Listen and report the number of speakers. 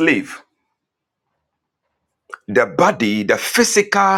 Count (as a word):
one